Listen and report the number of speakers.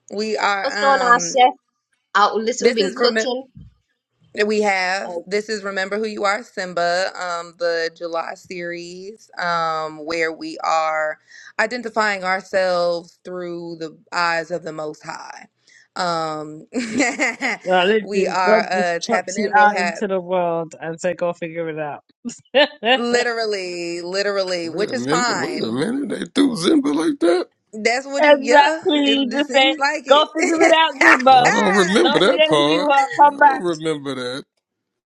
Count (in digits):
4